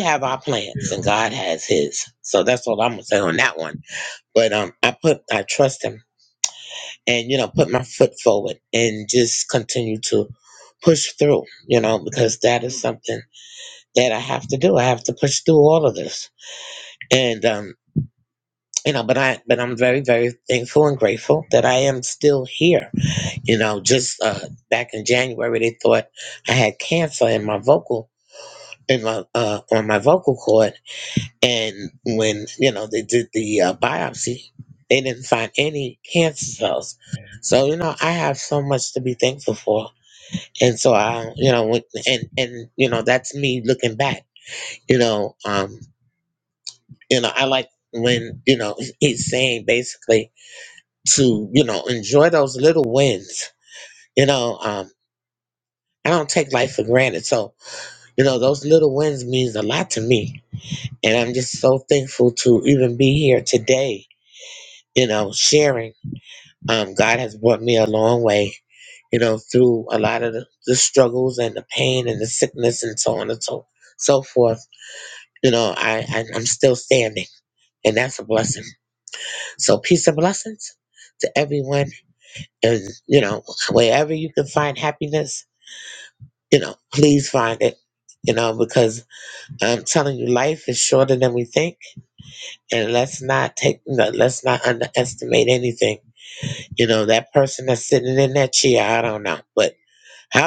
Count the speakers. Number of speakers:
one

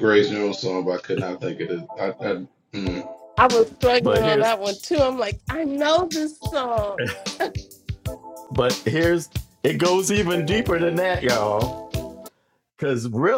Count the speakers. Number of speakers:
three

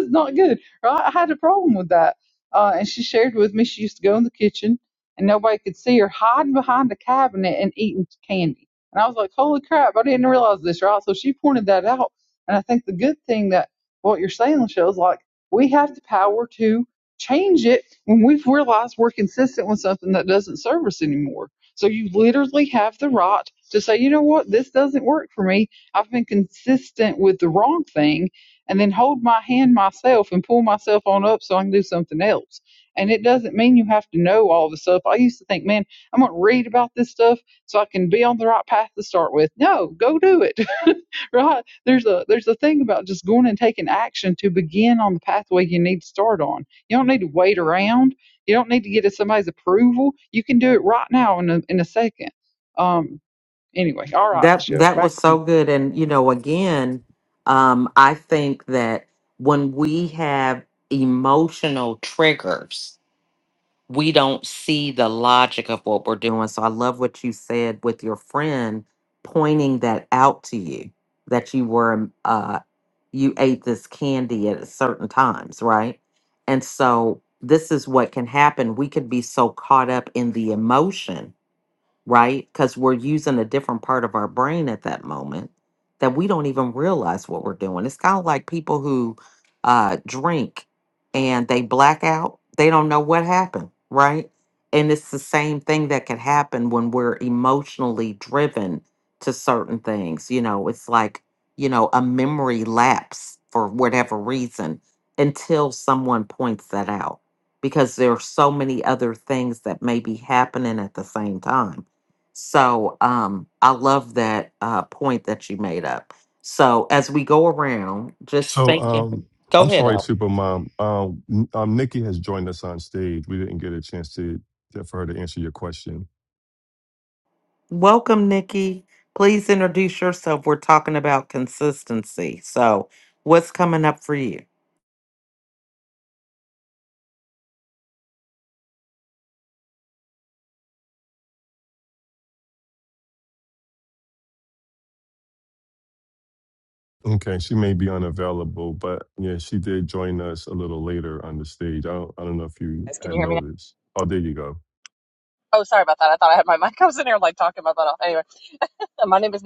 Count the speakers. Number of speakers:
four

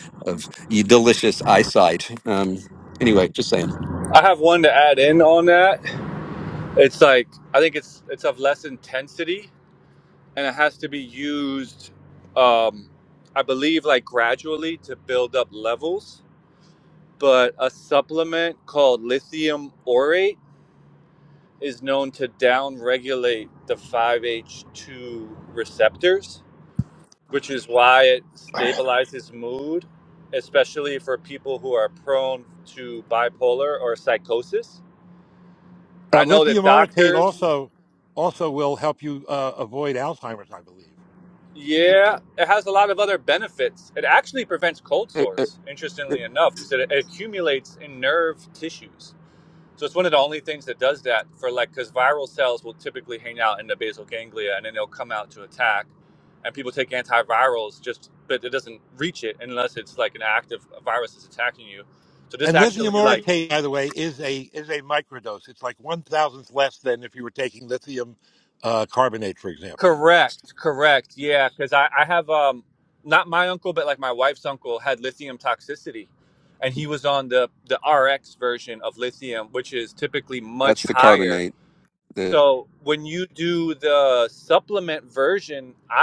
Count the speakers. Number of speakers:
three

